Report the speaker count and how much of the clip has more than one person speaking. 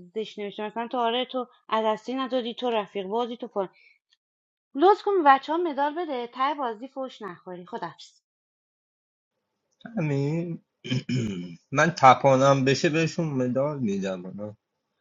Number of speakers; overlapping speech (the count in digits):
2, no overlap